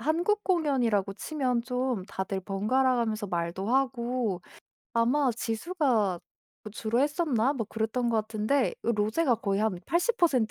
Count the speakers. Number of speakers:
1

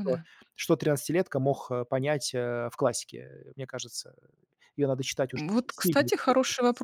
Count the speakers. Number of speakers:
2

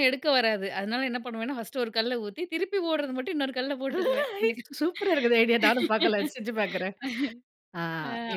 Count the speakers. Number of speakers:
2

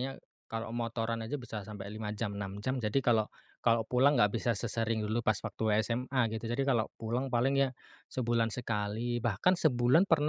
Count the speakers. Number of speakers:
1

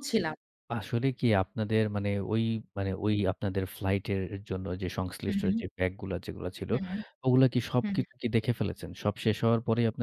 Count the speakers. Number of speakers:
2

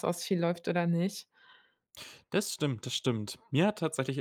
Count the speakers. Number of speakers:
2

